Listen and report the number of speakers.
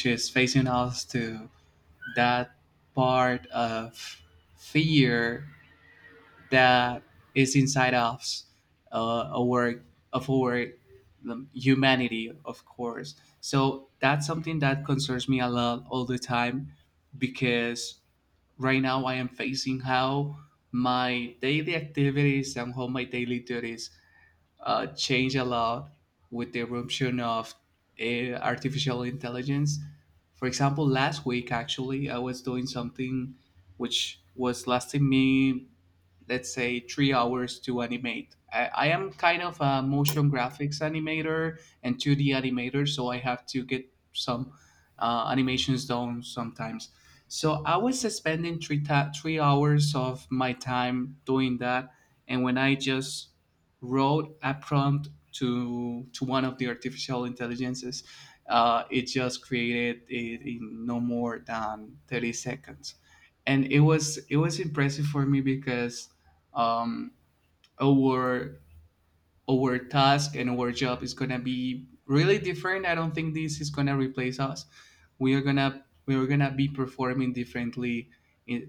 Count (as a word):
one